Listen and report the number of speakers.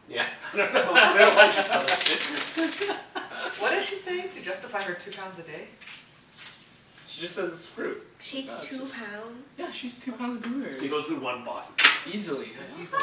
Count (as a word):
four